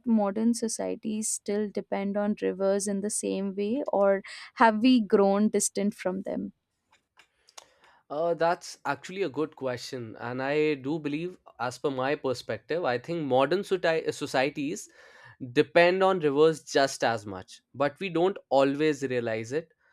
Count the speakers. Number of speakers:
2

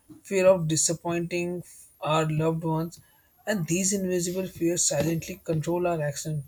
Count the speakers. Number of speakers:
1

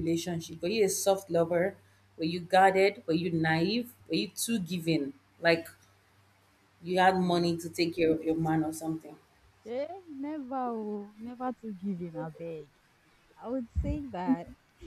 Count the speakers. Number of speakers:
2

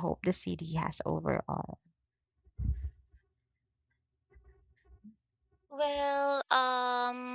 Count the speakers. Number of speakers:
2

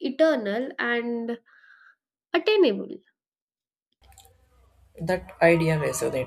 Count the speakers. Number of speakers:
2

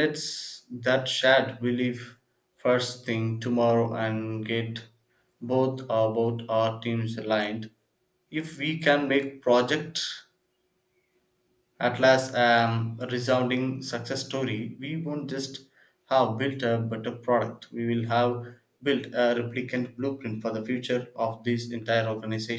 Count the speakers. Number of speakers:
1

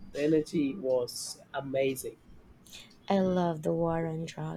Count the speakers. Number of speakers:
2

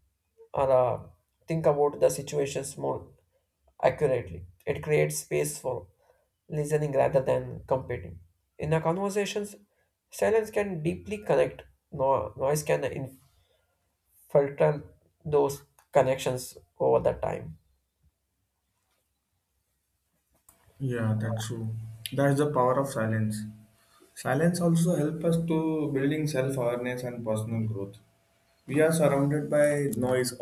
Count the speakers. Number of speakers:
2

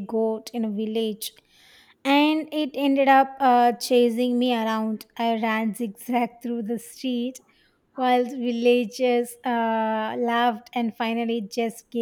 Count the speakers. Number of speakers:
1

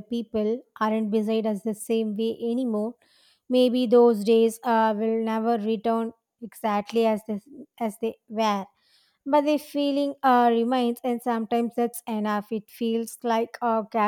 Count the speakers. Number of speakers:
1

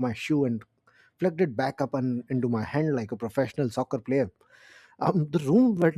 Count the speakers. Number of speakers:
1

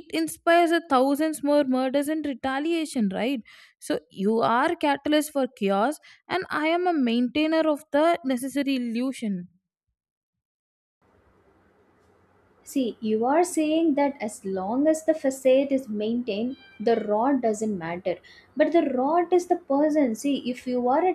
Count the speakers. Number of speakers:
2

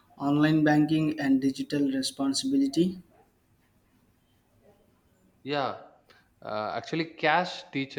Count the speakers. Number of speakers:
2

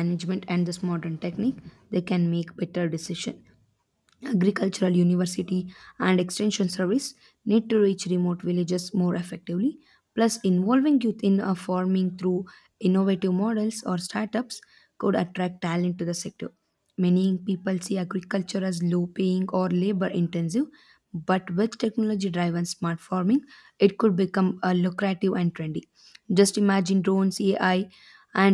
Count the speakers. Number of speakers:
1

